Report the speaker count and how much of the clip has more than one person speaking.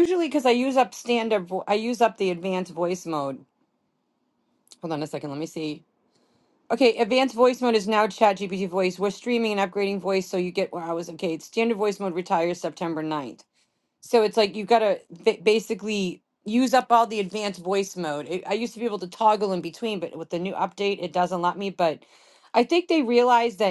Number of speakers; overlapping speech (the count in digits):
1, no overlap